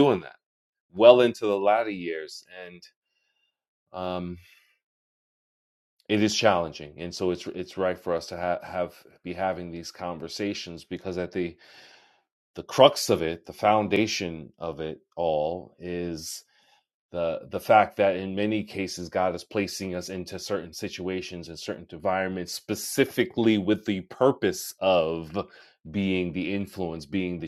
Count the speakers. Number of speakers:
1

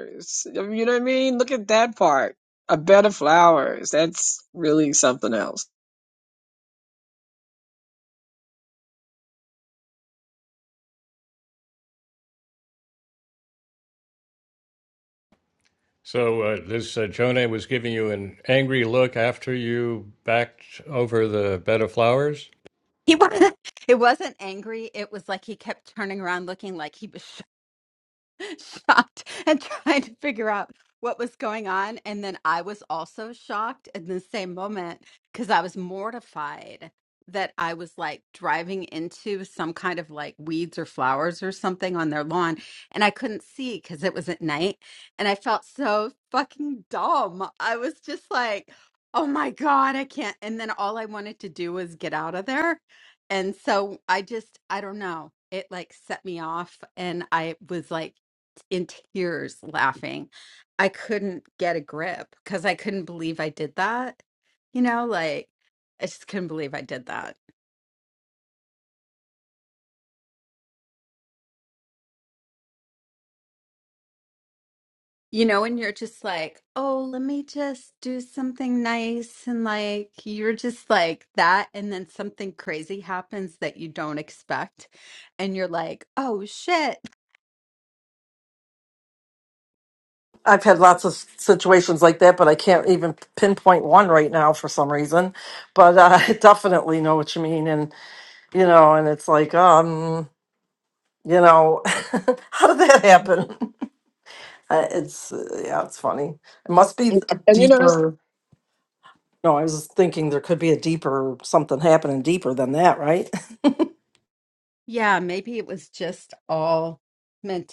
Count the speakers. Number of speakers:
4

